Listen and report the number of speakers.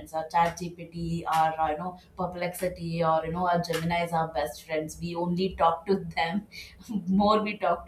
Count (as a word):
one